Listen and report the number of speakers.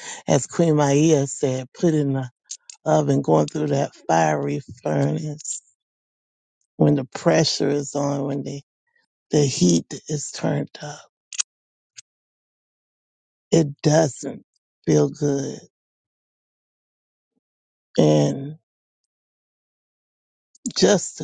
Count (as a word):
one